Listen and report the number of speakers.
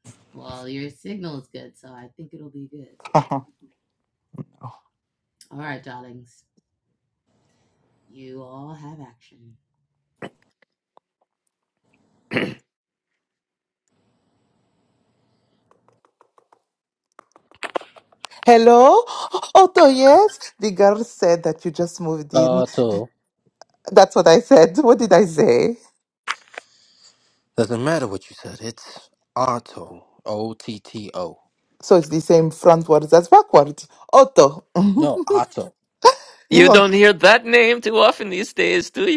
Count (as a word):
four